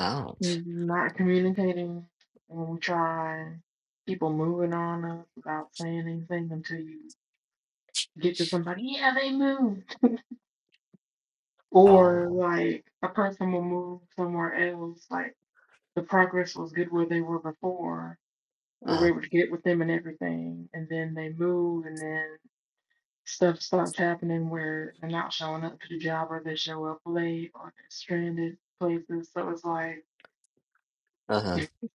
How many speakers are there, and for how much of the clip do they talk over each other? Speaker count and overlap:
two, about 3%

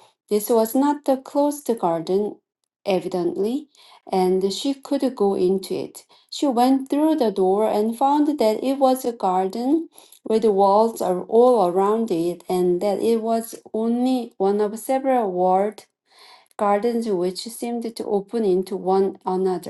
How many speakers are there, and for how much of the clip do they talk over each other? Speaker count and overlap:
one, no overlap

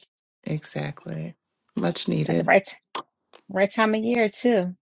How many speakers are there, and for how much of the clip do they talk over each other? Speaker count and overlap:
two, about 5%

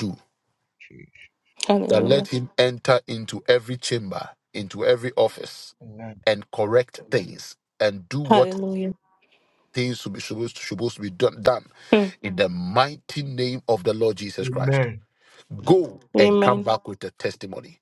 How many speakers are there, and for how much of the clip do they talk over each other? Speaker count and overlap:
three, about 9%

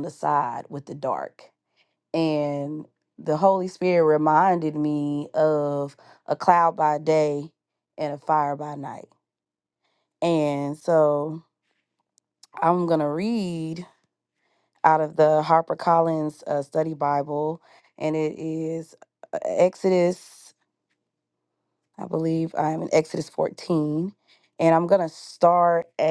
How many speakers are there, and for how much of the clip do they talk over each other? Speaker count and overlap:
one, no overlap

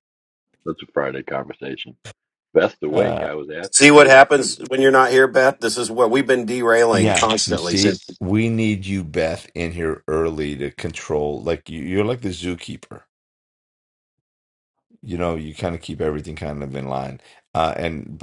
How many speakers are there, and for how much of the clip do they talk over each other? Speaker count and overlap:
three, about 13%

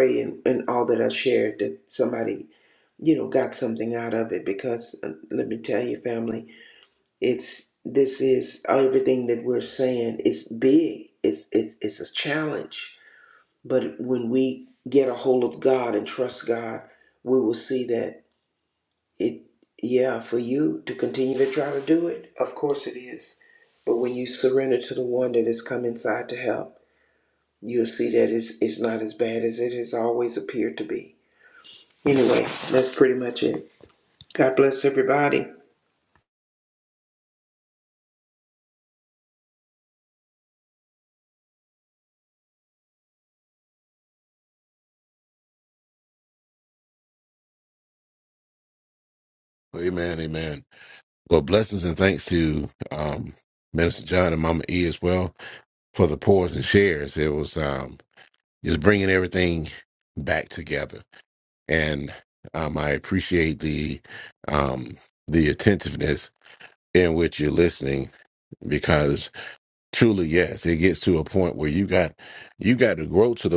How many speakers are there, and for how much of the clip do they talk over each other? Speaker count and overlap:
two, no overlap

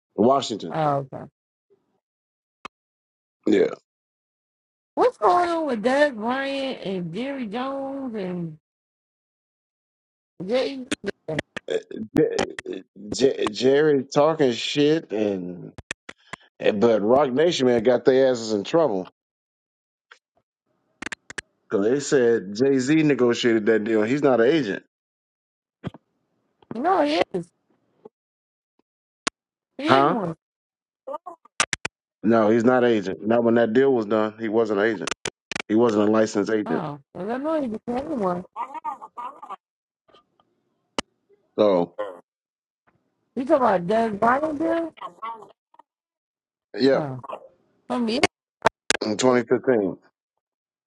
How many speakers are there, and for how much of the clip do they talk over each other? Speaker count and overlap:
two, about 1%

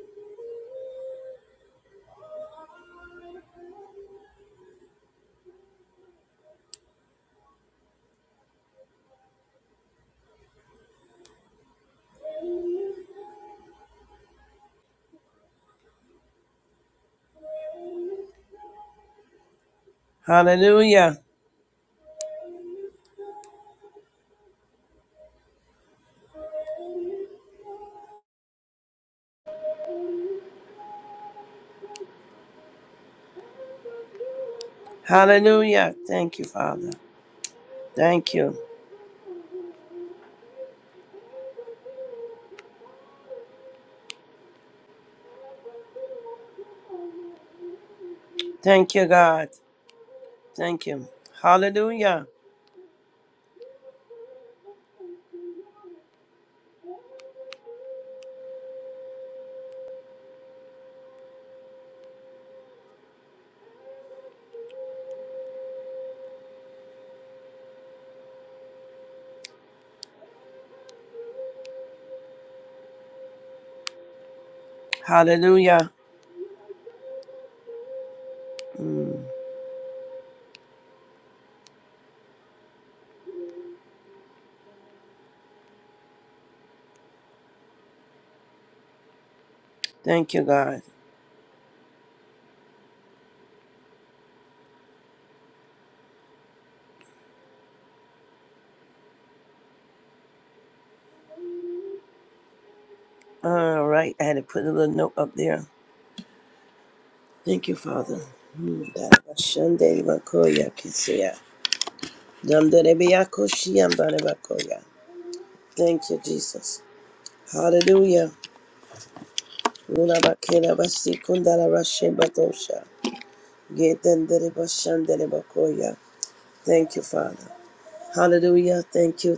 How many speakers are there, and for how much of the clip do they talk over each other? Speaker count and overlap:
one, no overlap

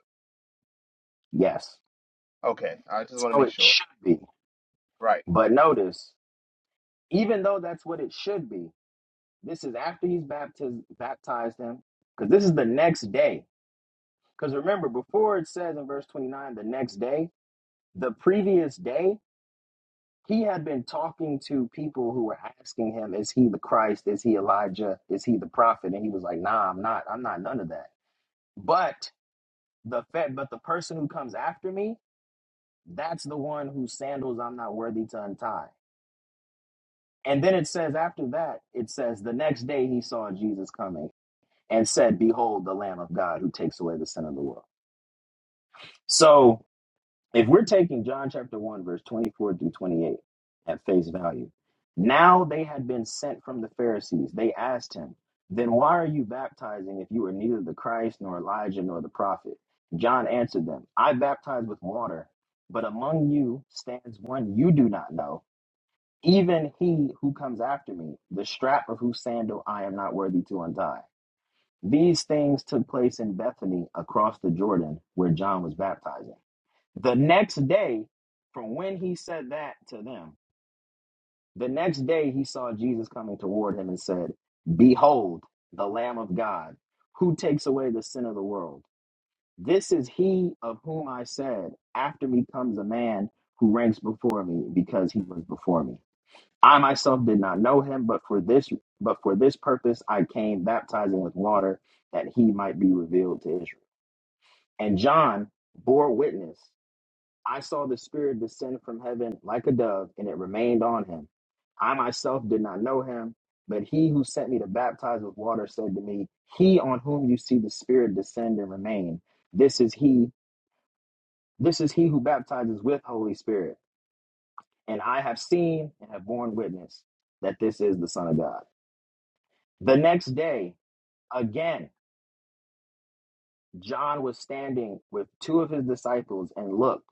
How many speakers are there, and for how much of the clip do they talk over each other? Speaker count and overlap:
two, under 1%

